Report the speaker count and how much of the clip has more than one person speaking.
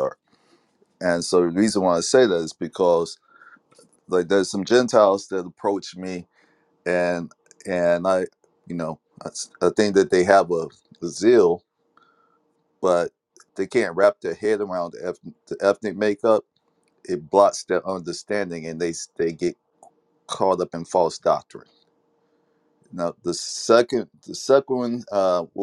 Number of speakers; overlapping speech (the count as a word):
one, no overlap